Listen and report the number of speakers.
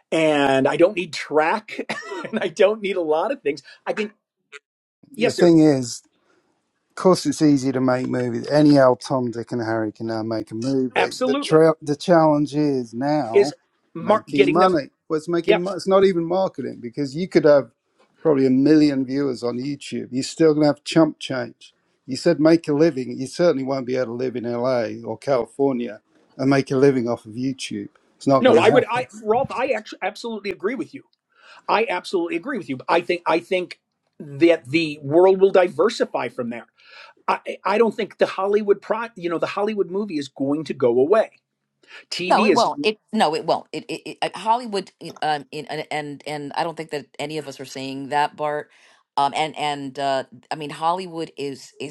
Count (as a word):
three